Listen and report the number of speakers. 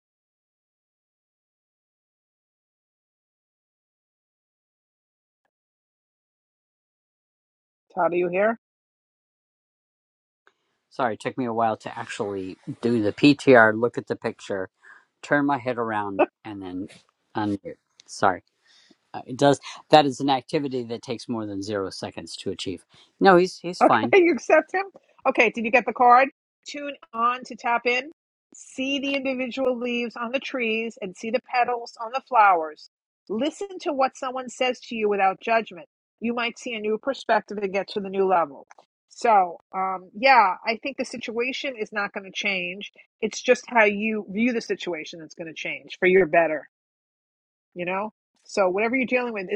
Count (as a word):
two